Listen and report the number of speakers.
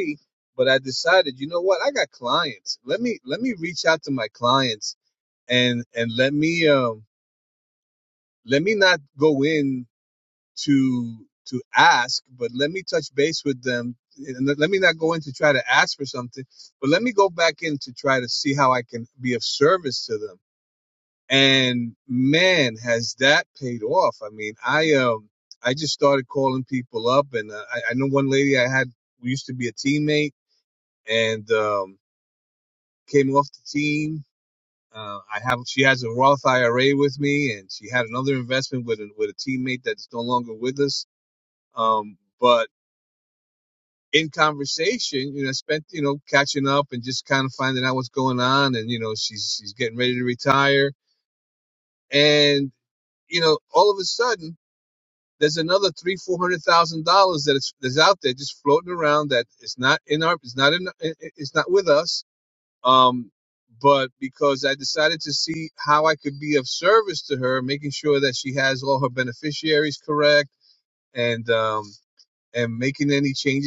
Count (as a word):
one